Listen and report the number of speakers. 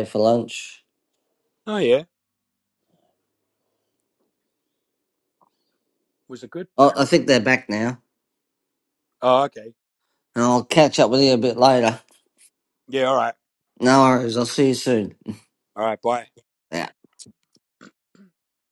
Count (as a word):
two